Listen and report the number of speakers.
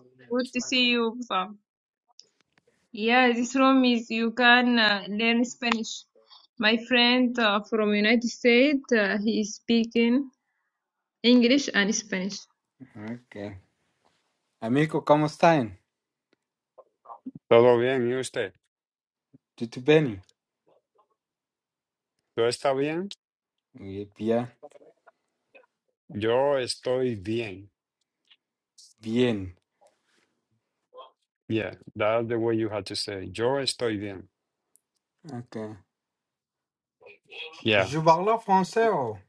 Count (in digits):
3